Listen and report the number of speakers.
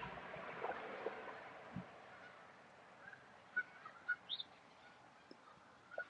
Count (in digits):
0